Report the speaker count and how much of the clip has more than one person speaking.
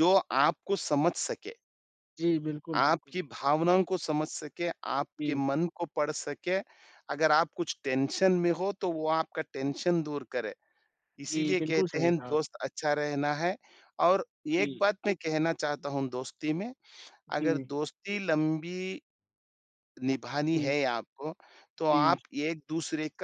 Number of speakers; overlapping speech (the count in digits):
2, about 10%